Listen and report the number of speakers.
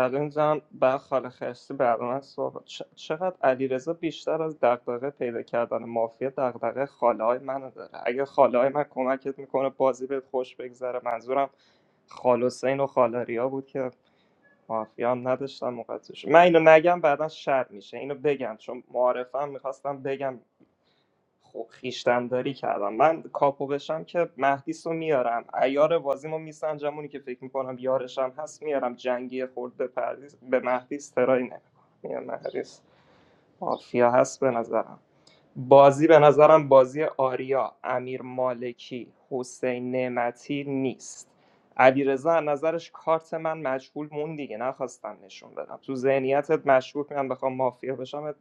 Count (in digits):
1